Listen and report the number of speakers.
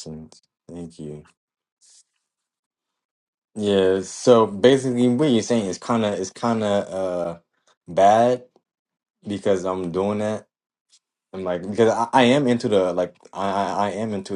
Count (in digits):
1